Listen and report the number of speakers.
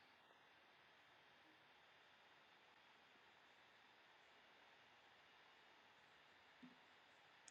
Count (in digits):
0